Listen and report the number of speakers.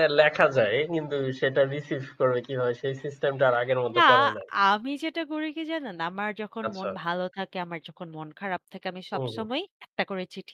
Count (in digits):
2